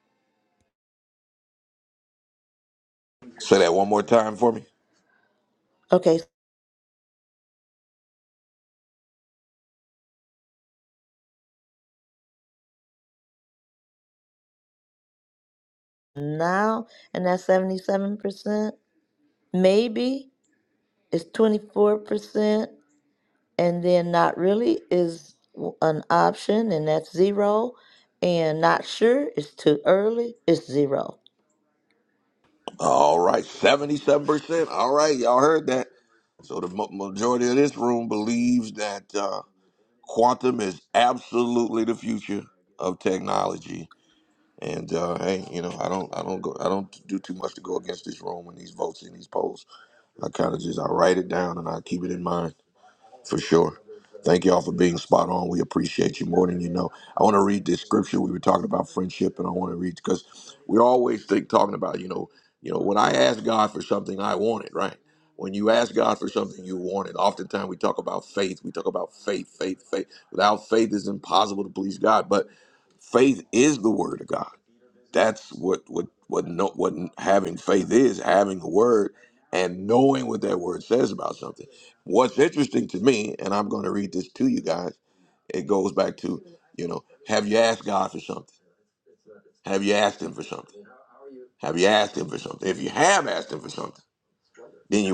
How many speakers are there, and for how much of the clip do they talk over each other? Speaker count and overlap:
2, no overlap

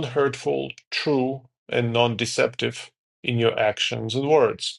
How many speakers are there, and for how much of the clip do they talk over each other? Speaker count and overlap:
1, no overlap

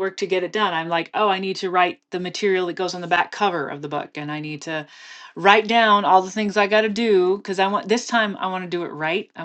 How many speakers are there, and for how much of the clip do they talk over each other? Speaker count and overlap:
1, no overlap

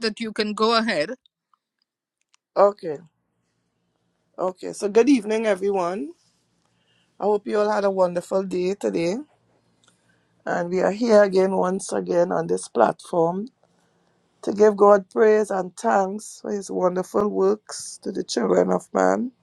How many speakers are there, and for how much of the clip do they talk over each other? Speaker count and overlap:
2, no overlap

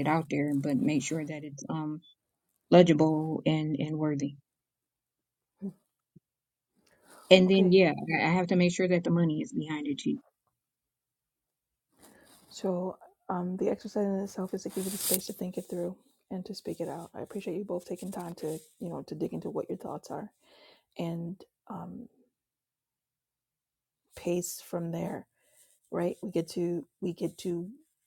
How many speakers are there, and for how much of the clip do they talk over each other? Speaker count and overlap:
2, about 1%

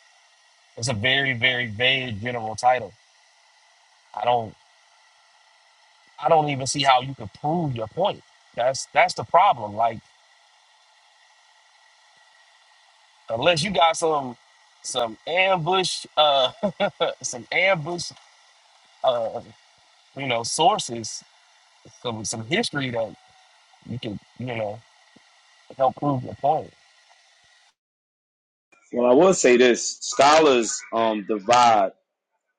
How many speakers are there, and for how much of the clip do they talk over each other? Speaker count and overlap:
2, no overlap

